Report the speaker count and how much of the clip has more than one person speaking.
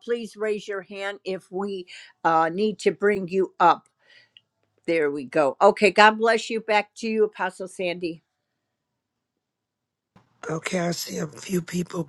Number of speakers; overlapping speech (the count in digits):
2, no overlap